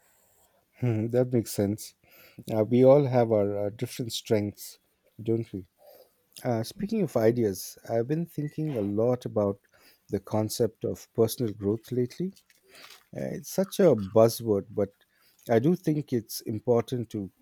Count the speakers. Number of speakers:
1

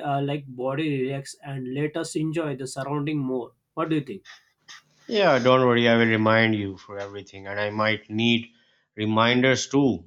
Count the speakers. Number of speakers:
2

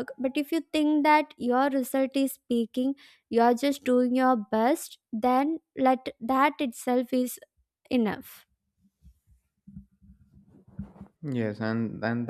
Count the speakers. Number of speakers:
2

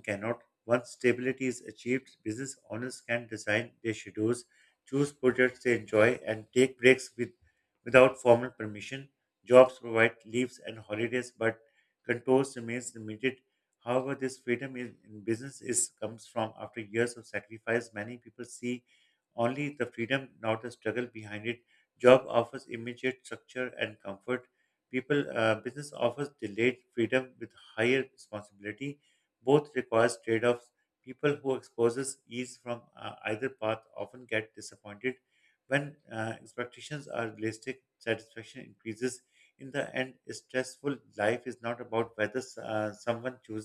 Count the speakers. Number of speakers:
1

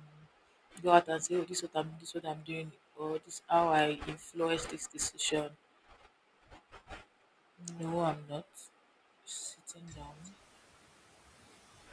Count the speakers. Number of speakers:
1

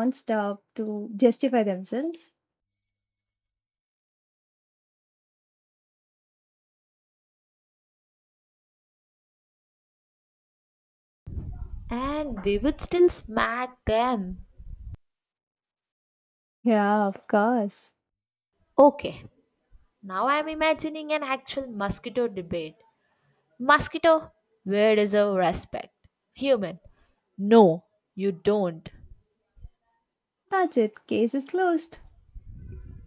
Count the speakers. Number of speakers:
2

